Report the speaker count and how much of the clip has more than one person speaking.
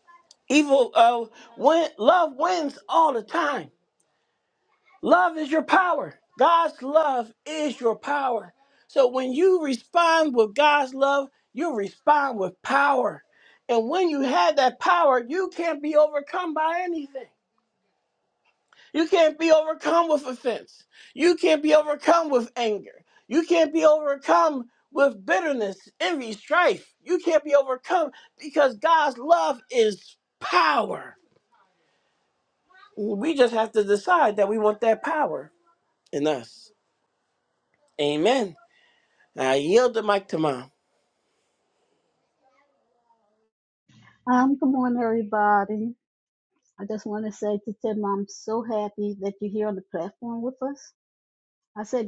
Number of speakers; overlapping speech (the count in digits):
2, no overlap